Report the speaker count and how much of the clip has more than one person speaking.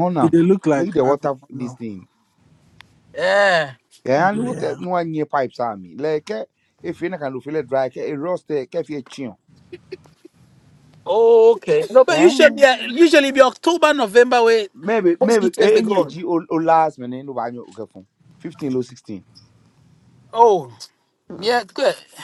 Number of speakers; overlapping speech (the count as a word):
three, about 13%